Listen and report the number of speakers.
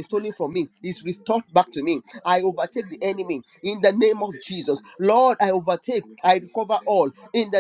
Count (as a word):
one